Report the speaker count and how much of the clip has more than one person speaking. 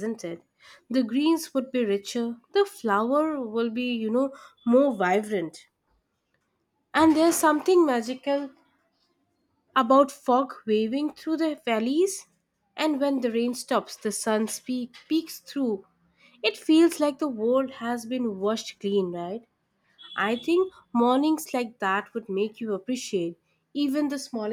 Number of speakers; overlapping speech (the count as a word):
one, no overlap